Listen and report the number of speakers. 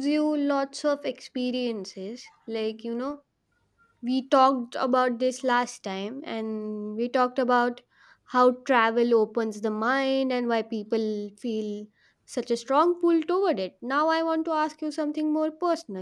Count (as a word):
one